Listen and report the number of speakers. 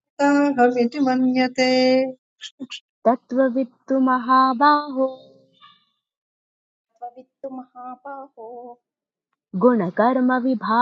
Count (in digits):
3